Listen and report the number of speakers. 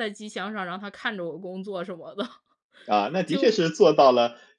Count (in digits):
2